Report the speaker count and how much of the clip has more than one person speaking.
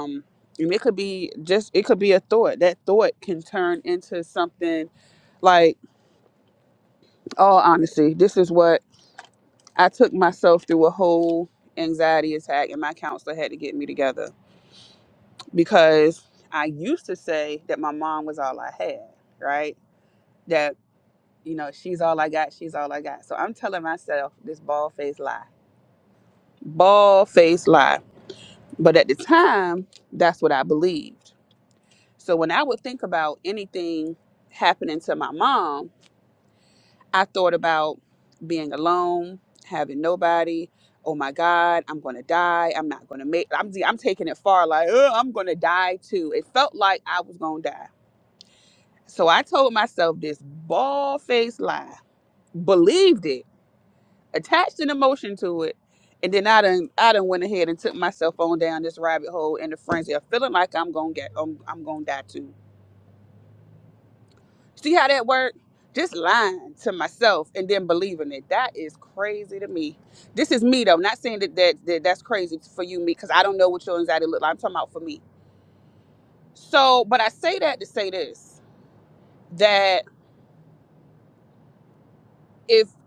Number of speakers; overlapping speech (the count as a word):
one, no overlap